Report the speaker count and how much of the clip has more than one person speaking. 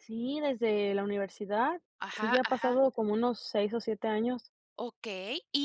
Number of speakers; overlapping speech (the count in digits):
2, about 11%